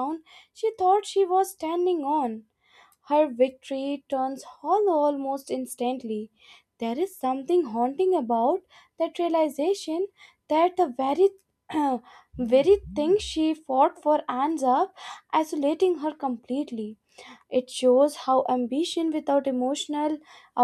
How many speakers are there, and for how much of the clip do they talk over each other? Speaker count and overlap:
1, no overlap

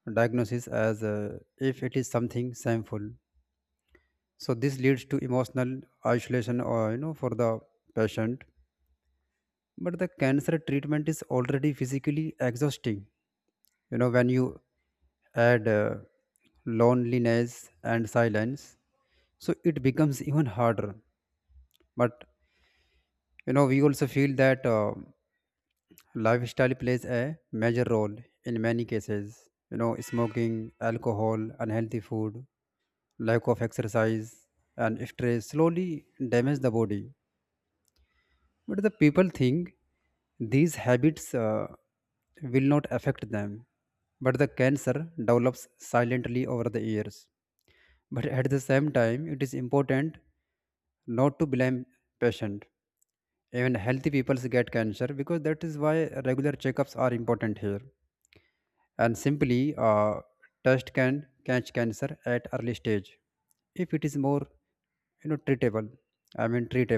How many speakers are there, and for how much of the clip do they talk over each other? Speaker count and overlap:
1, no overlap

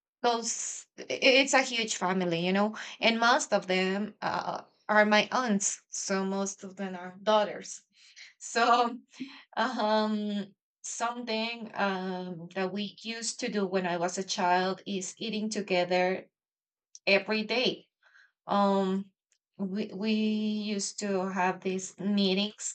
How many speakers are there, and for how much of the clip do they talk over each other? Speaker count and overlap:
1, no overlap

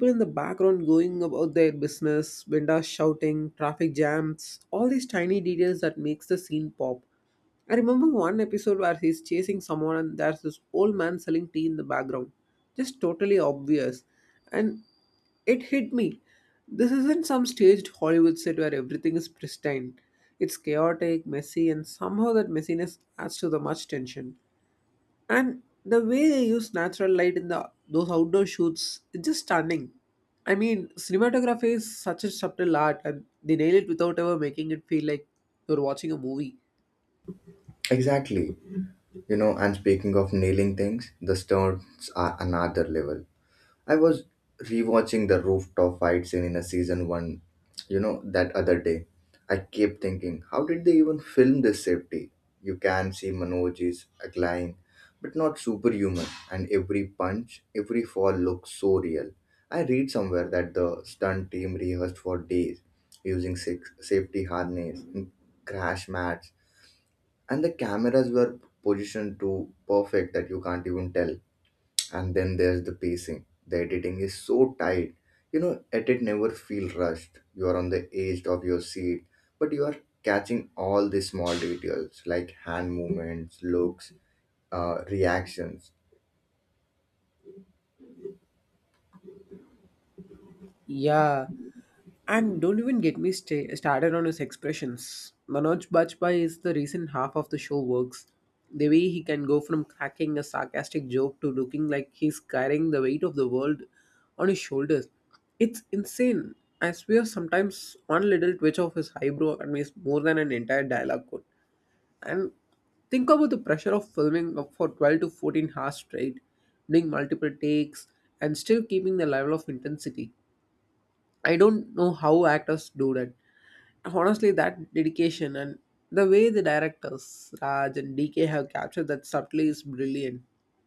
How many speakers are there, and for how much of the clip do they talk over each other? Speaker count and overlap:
2, no overlap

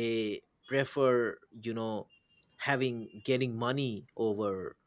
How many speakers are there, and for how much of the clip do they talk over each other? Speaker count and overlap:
1, no overlap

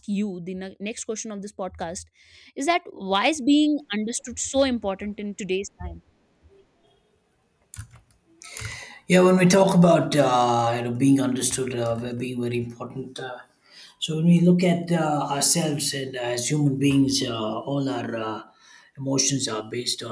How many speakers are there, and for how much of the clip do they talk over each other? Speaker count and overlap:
2, no overlap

